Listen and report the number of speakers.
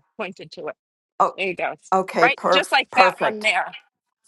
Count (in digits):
2